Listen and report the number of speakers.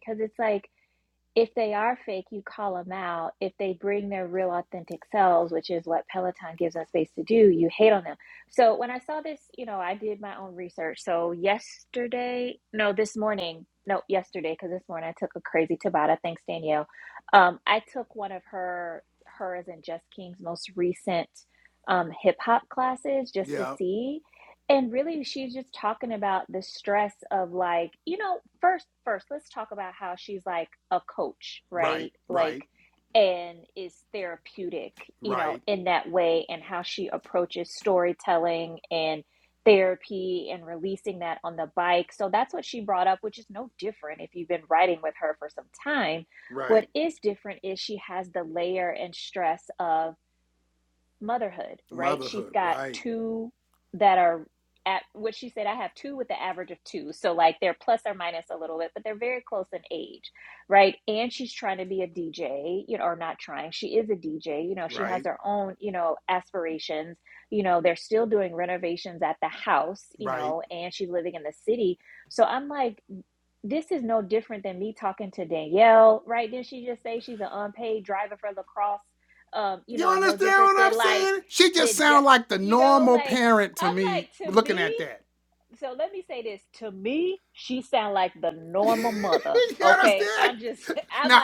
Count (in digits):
2